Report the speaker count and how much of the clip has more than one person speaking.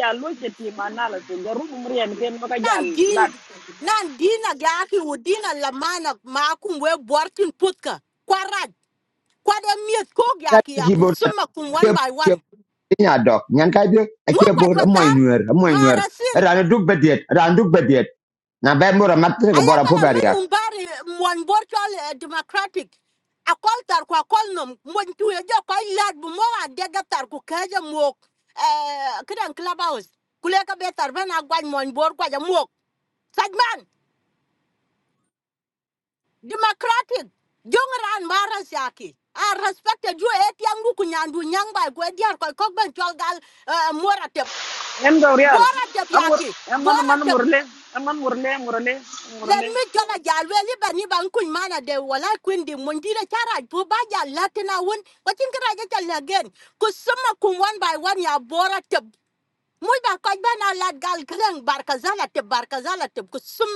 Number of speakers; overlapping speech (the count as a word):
three, about 9%